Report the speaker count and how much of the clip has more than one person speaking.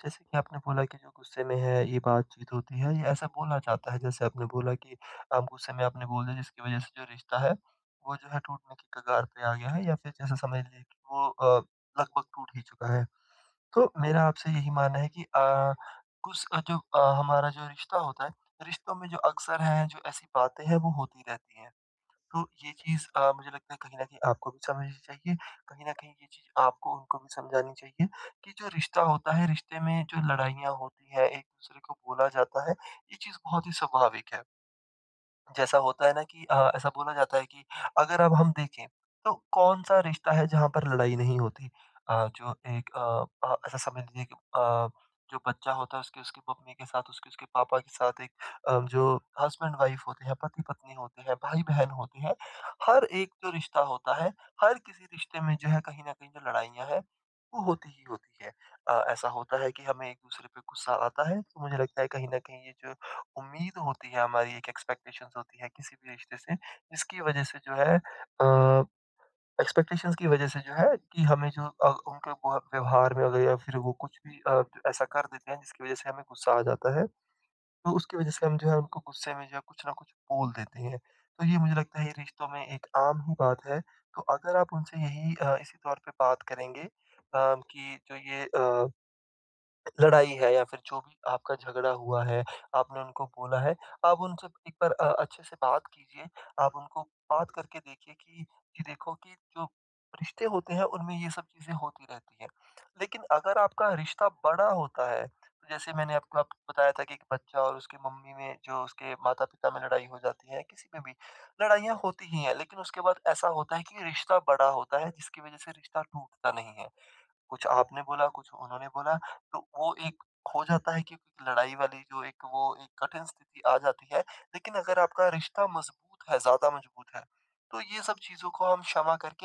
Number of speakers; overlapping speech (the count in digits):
1, no overlap